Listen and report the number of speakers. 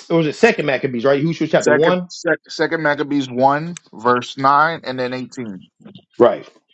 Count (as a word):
two